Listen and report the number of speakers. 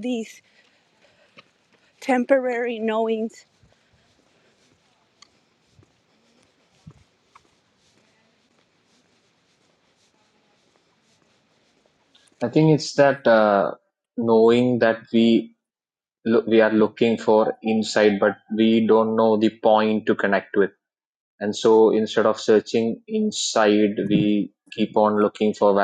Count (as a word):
two